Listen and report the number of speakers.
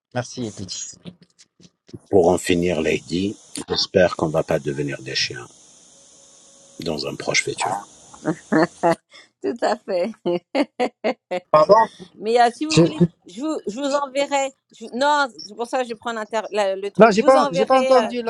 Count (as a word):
three